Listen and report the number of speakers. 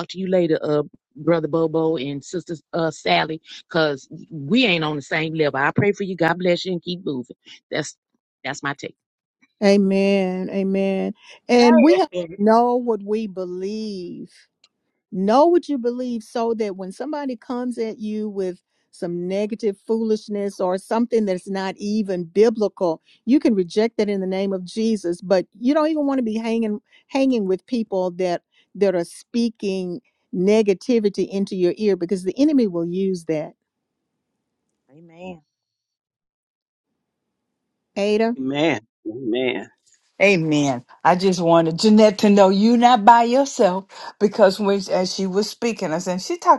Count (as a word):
four